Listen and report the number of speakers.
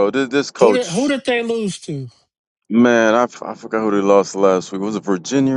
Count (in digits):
2